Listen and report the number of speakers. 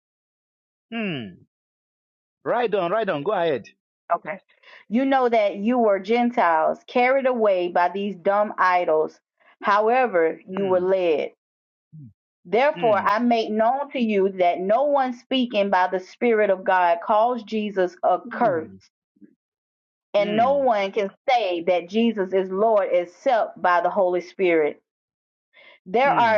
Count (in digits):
2